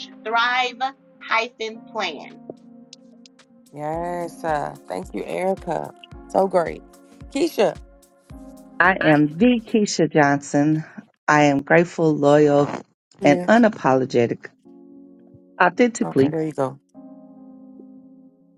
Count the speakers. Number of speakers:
three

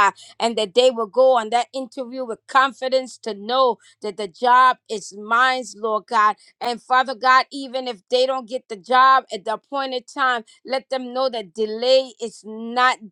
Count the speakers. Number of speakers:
one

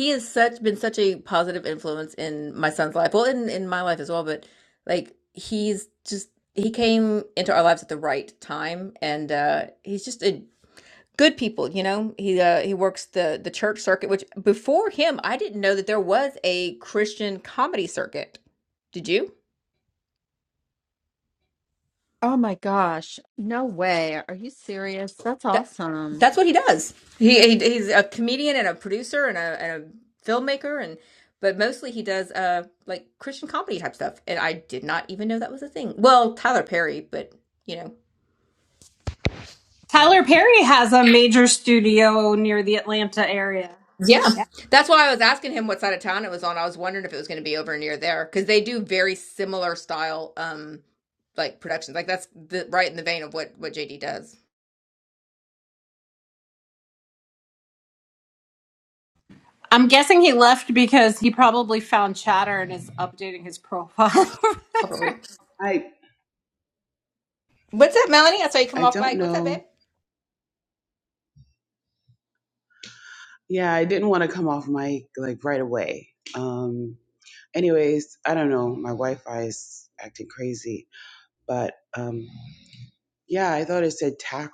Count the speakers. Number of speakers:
four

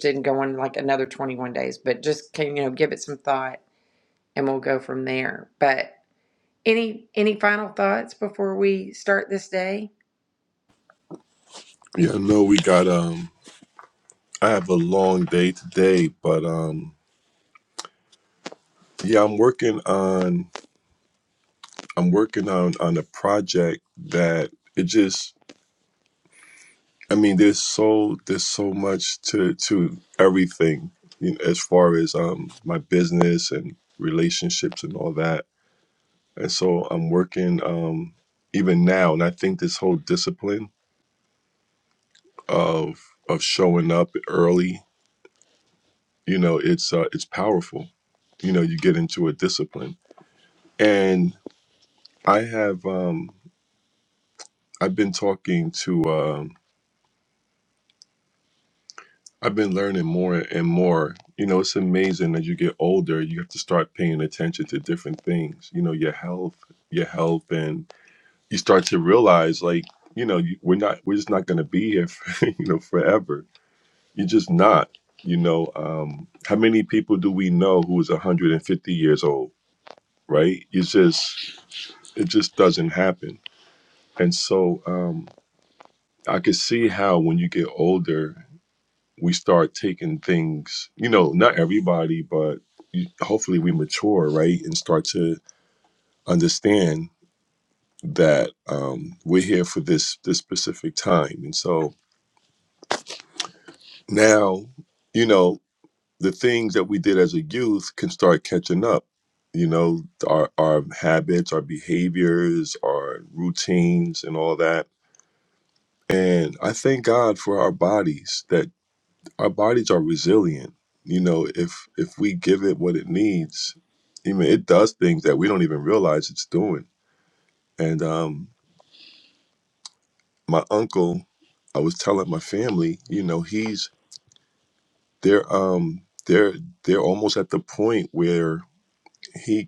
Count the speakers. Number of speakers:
two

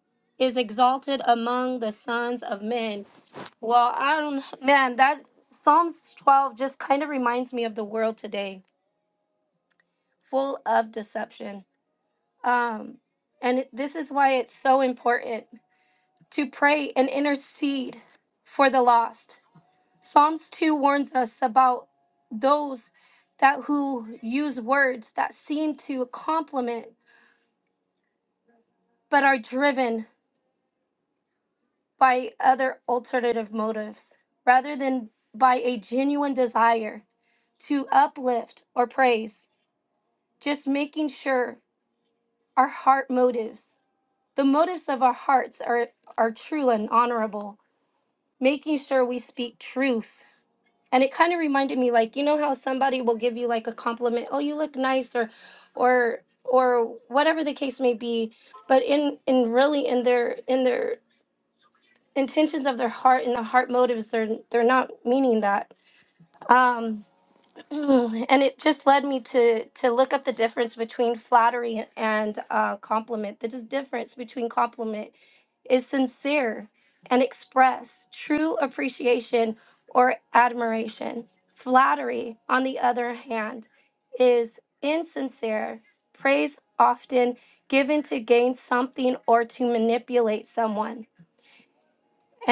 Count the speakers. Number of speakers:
one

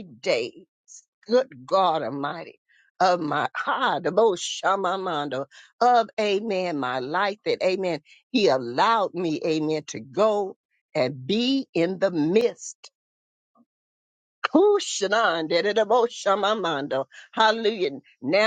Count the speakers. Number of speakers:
one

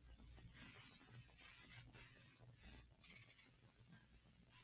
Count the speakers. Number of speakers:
zero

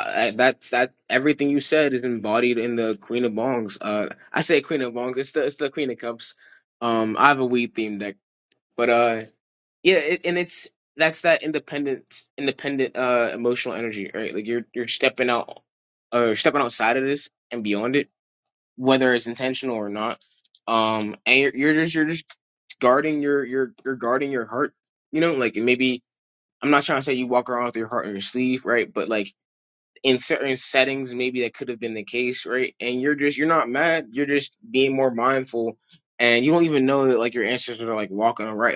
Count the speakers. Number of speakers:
one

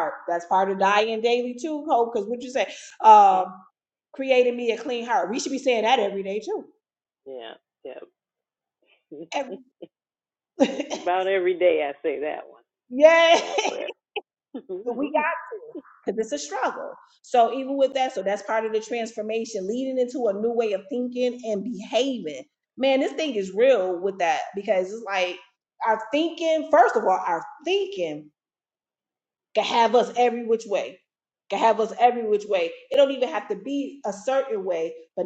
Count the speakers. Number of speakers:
two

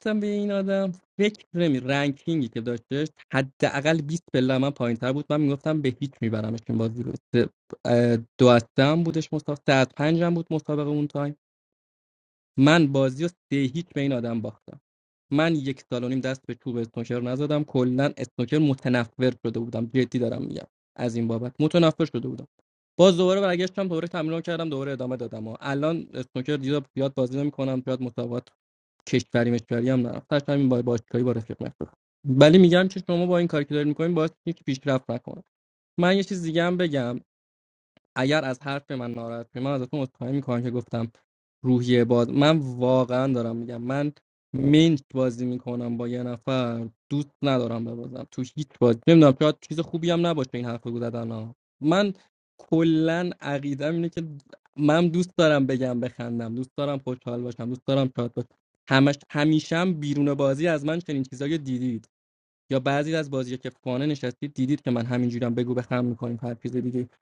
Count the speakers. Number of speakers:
one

